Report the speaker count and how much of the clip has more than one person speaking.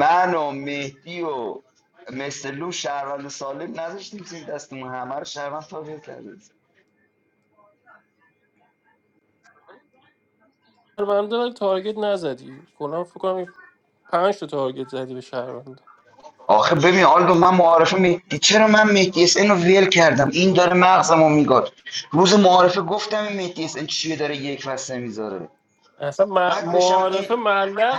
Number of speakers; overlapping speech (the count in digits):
2, about 3%